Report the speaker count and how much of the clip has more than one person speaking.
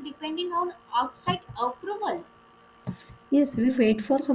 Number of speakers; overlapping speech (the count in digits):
2, no overlap